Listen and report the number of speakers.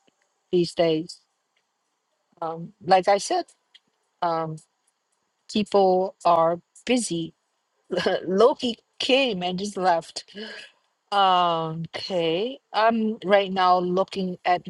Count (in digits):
1